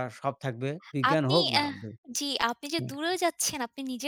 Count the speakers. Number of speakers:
2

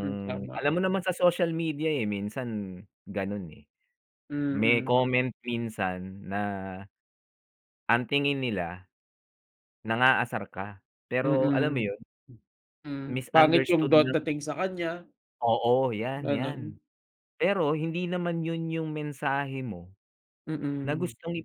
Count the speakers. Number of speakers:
2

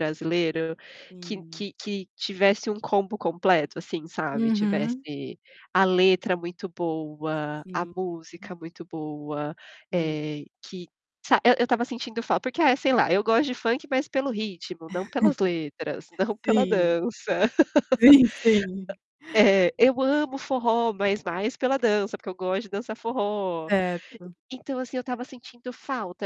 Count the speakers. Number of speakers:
2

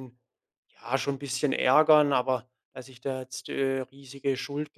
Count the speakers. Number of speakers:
1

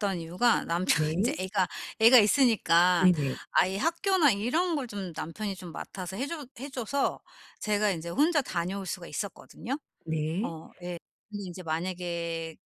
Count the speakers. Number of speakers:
2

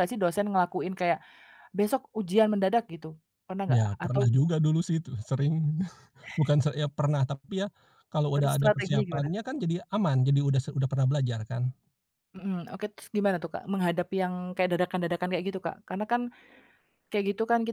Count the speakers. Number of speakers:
2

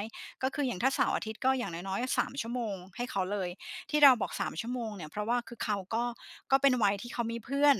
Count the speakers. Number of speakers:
1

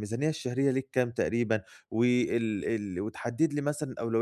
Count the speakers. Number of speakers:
1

